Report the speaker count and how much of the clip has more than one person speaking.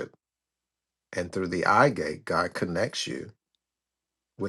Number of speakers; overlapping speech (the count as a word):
one, no overlap